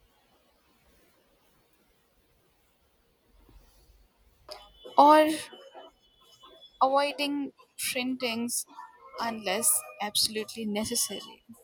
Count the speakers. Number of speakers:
1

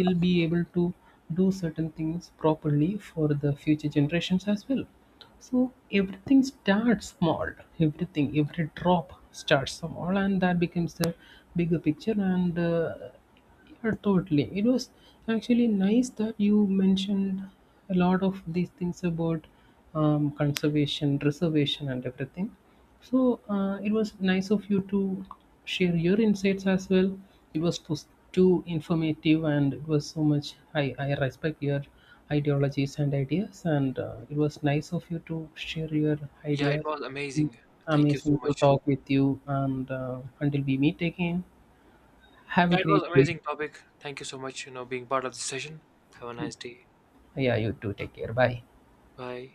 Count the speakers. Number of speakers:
2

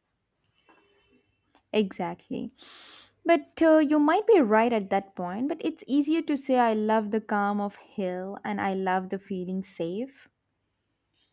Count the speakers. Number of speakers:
1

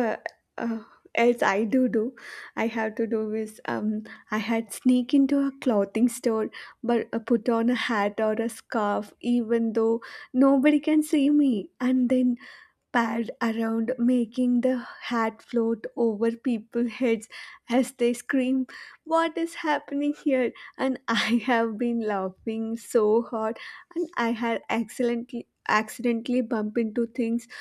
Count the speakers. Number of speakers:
1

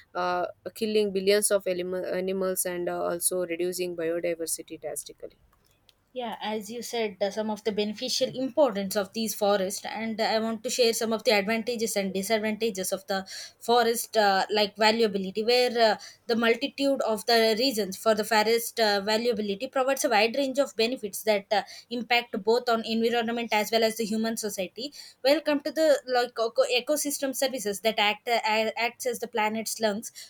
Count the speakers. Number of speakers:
2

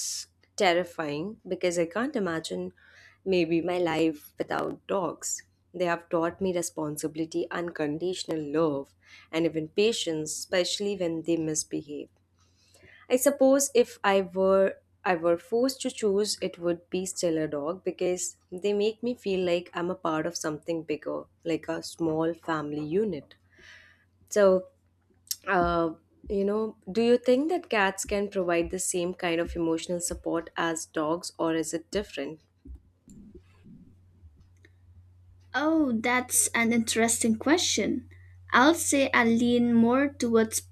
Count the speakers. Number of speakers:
2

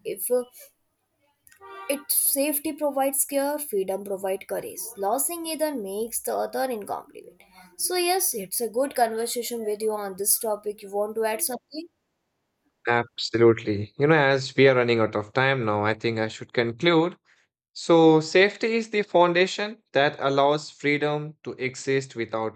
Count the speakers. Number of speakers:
2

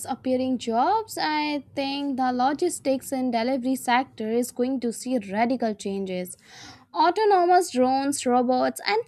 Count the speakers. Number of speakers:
1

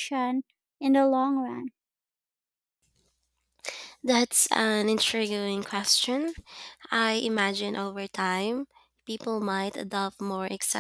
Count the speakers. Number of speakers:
2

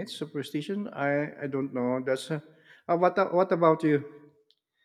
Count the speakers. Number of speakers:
1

